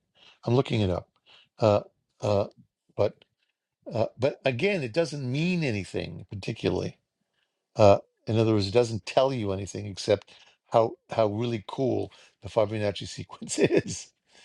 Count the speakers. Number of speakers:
one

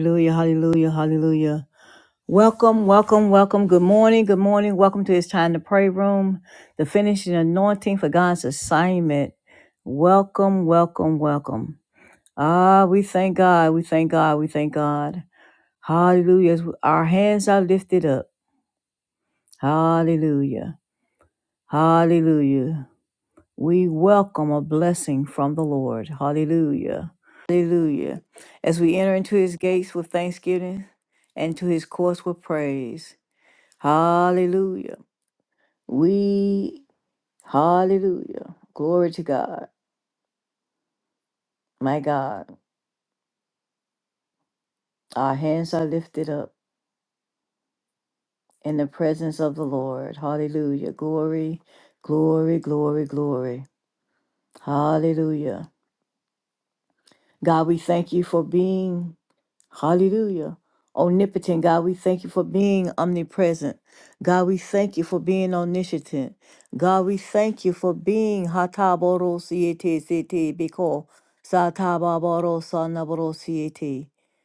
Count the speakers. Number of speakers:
one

